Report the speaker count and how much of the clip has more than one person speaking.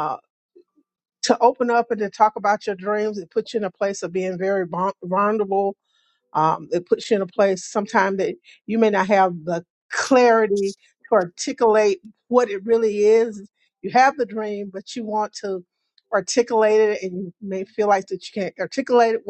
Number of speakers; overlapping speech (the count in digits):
1, no overlap